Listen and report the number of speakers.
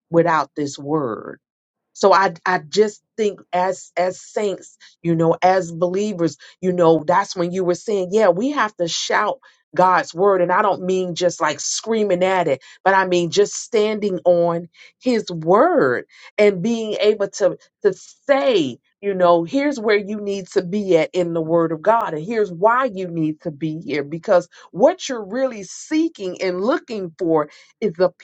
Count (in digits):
1